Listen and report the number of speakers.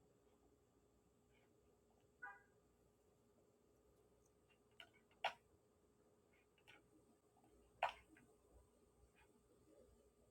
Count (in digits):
0